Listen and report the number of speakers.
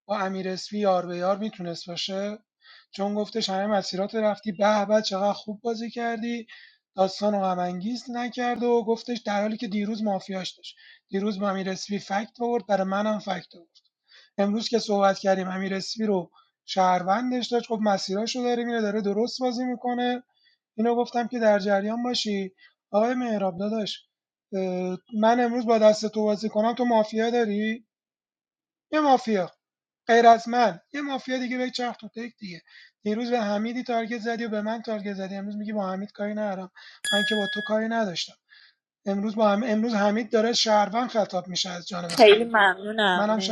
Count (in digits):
2